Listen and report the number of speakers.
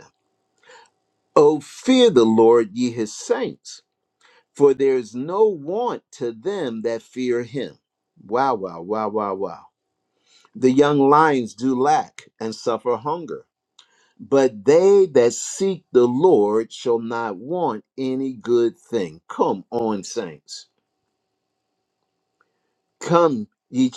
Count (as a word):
one